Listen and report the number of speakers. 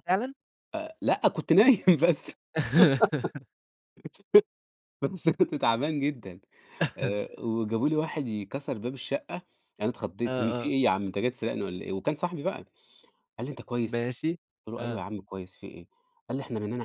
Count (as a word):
two